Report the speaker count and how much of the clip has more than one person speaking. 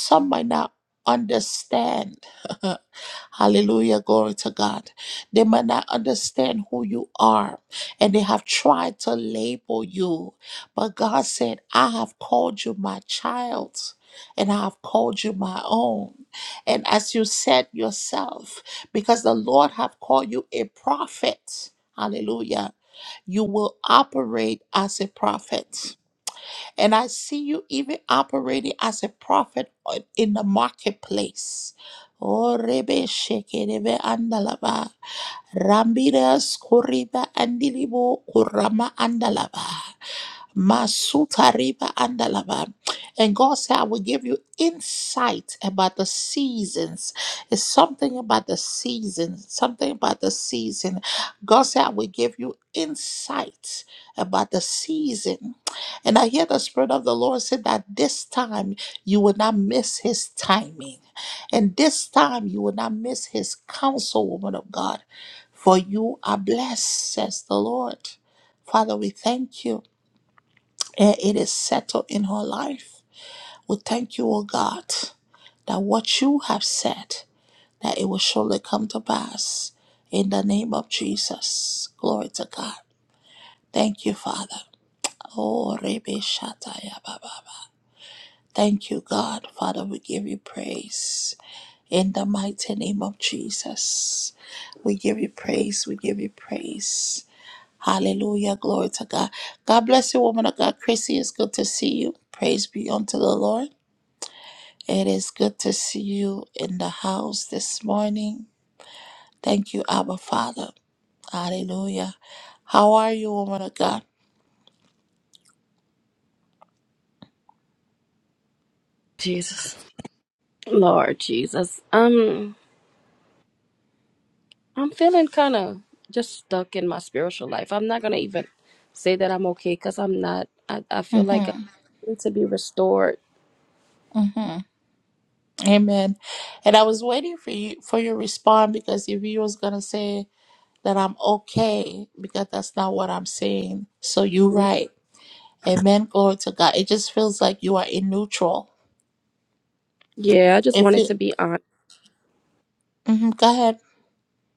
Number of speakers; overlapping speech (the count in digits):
2, about 1%